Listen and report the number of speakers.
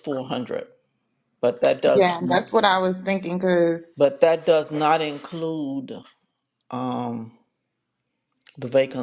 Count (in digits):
2